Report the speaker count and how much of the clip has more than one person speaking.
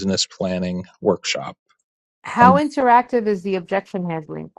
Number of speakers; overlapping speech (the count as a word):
two, about 4%